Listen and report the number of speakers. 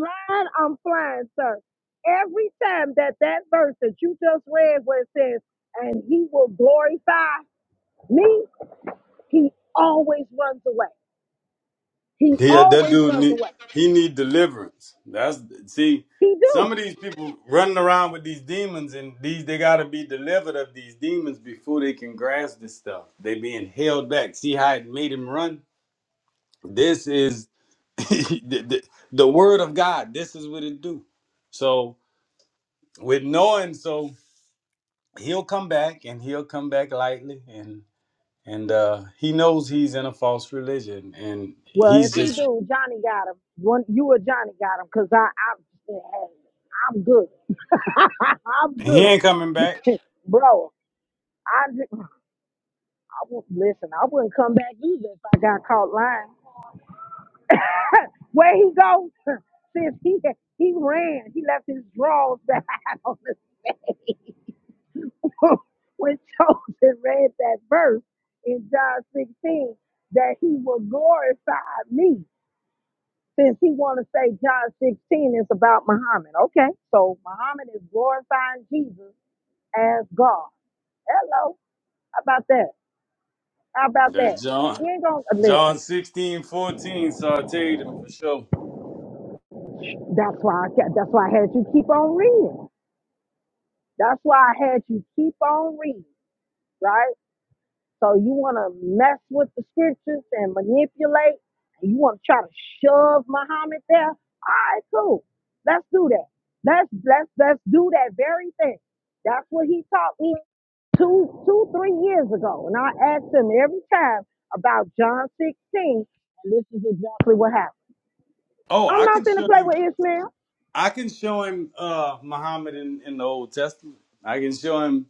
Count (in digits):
2